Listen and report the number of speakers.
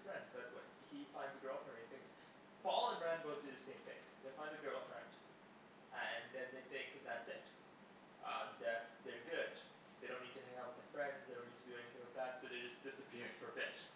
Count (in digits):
1